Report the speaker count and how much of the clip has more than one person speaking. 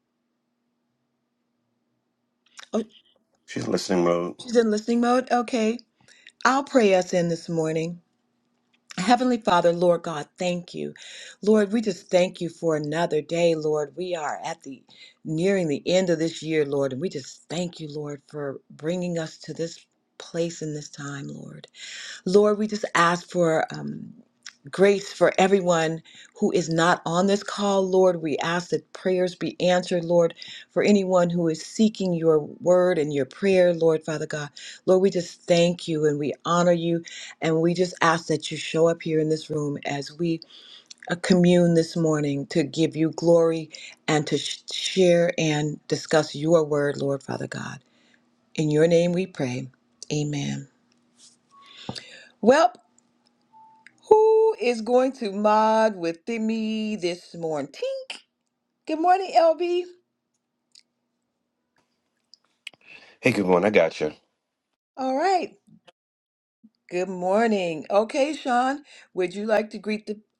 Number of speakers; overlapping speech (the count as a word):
two, no overlap